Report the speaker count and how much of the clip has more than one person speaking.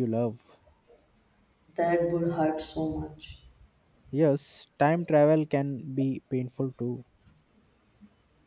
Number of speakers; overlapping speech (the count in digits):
2, no overlap